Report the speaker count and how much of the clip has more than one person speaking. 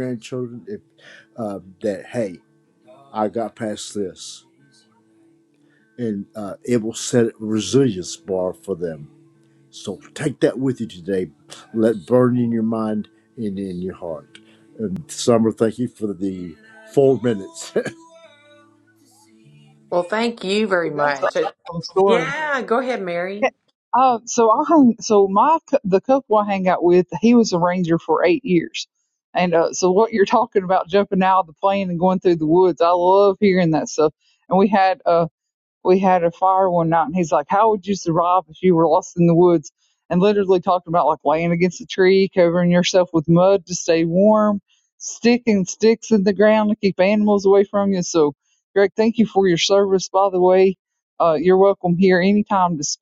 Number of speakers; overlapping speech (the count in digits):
3, about 1%